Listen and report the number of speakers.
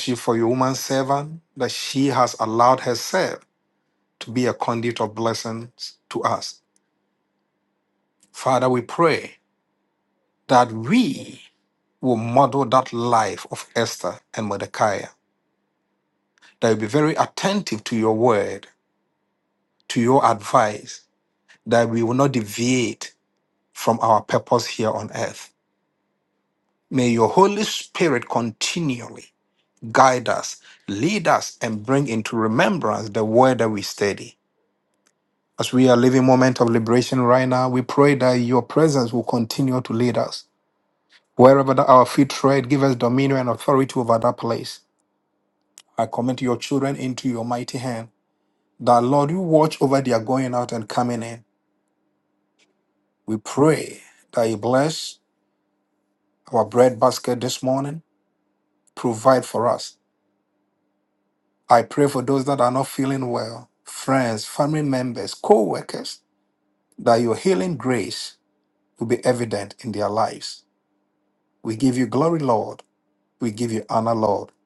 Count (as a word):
one